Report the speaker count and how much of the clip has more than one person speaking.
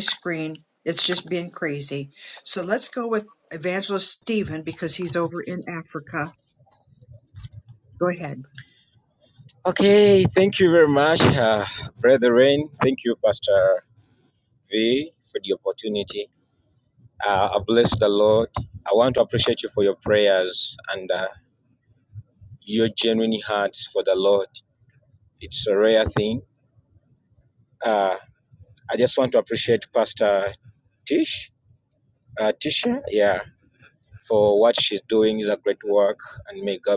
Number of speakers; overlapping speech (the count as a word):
two, no overlap